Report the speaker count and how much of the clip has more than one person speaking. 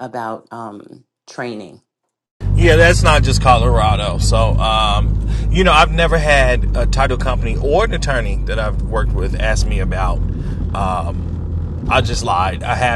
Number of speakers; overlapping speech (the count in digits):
2, no overlap